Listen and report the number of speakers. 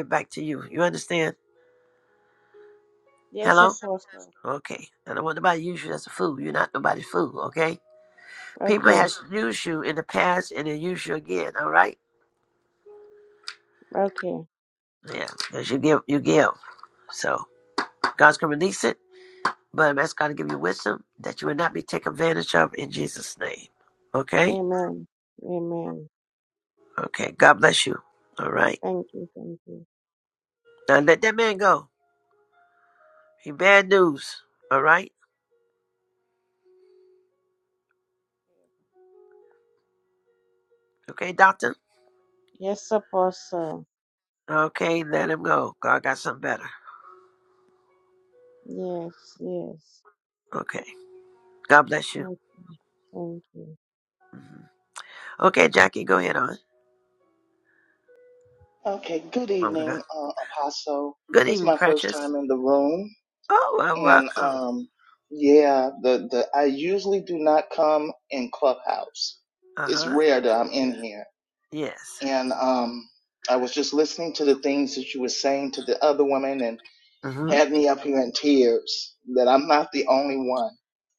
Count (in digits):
3